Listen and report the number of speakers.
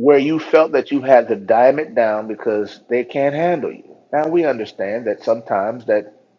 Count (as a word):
one